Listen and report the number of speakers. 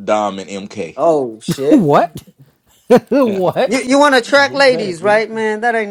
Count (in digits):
3